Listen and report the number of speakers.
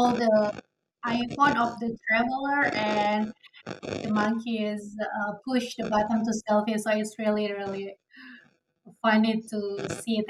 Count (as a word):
one